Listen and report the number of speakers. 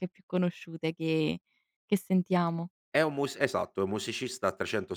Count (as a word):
two